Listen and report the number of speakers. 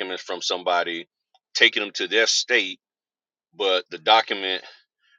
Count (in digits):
1